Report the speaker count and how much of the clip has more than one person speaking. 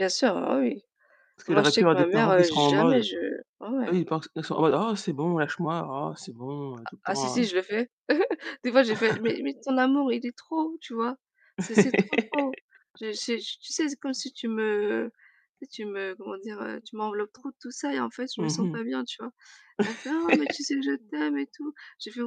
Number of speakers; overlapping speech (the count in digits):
2, about 12%